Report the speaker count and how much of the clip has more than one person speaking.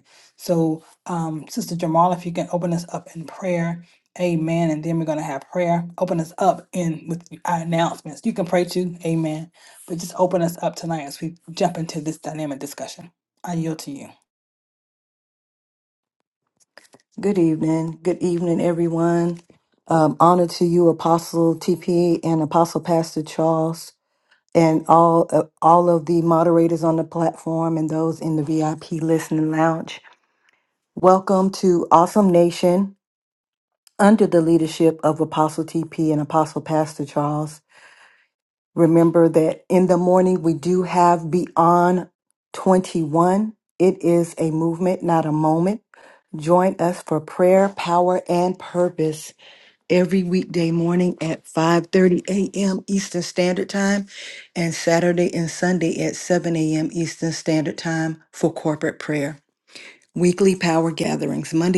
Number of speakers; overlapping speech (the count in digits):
2, no overlap